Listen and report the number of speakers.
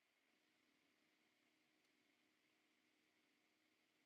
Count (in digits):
0